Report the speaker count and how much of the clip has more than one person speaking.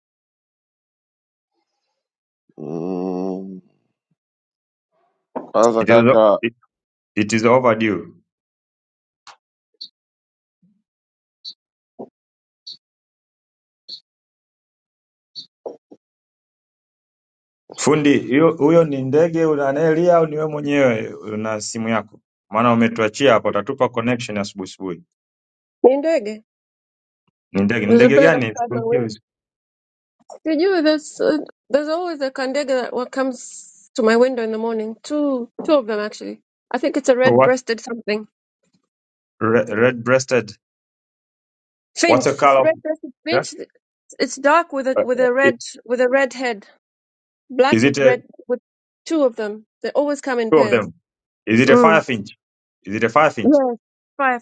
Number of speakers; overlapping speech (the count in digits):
3, about 7%